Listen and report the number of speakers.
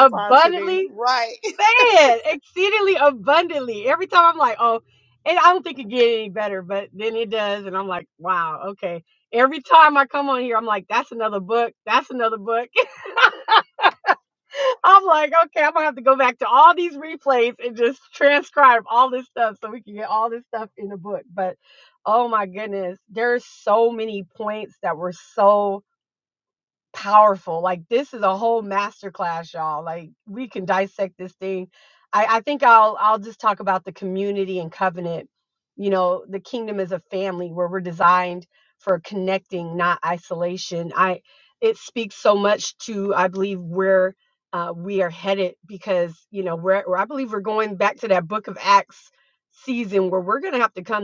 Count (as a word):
two